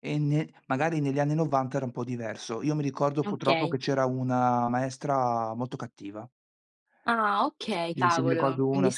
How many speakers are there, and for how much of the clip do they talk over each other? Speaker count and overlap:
2, about 17%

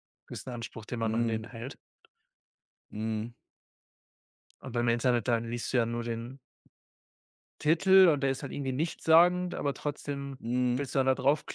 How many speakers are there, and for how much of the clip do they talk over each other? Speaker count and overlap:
2, about 3%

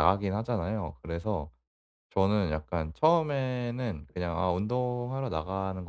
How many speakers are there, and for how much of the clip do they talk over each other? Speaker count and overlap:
1, no overlap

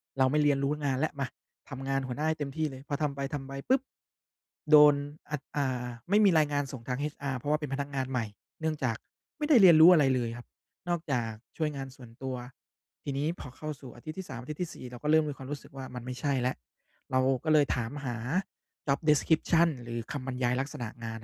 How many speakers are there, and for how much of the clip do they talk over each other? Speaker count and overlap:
1, no overlap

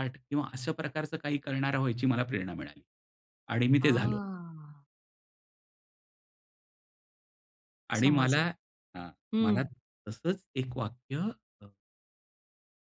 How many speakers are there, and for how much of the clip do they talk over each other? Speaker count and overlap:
2, about 9%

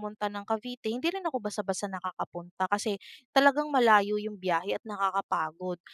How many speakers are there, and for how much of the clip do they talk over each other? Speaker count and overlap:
1, no overlap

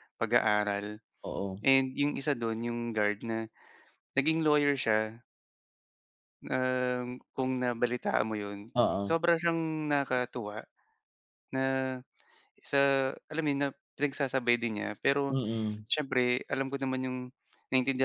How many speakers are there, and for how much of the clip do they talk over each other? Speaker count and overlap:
2, about 1%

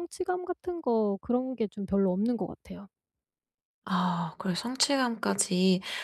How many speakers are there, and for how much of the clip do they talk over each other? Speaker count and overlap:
2, no overlap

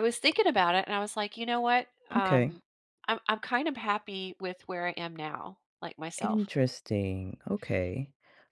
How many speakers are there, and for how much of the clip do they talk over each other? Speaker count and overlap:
2, about 8%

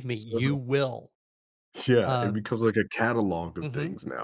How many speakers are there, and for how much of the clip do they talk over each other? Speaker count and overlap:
2, about 24%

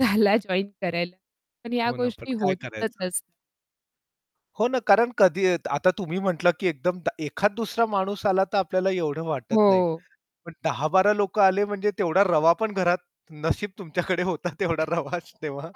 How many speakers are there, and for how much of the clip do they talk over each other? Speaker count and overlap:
2, about 10%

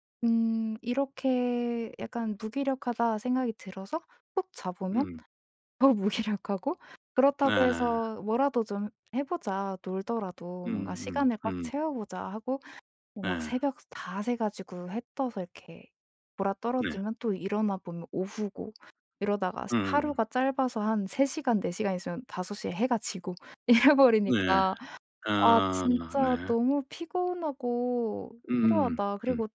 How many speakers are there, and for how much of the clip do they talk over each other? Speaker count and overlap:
2, about 17%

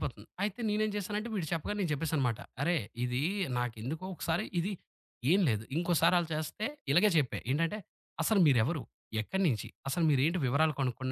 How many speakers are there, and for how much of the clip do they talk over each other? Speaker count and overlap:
1, no overlap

